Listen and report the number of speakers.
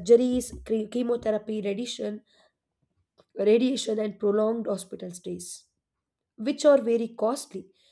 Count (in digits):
1